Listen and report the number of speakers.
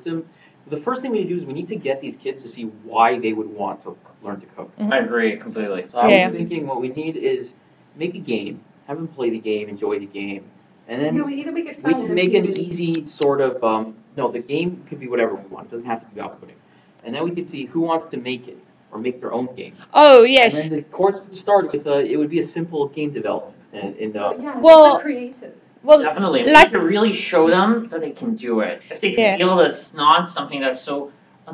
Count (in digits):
4